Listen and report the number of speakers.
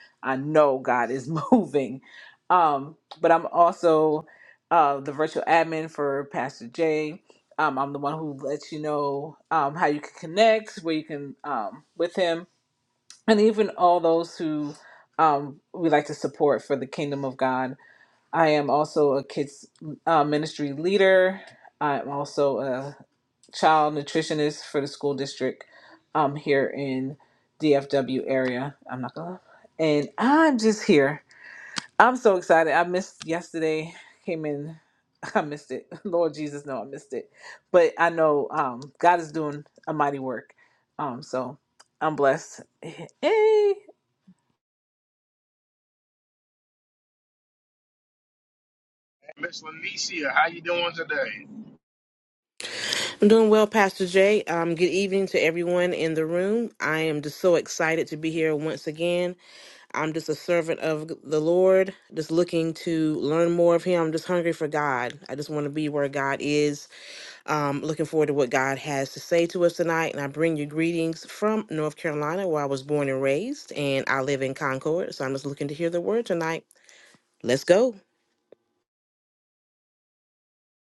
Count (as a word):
three